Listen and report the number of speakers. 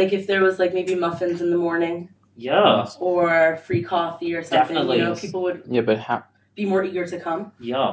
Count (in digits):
3